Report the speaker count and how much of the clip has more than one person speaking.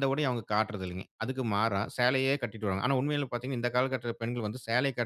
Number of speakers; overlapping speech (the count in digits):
1, no overlap